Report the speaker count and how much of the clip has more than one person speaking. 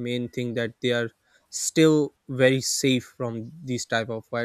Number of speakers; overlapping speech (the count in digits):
1, no overlap